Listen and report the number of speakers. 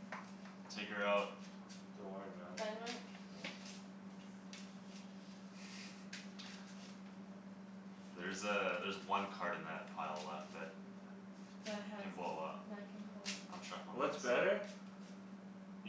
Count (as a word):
three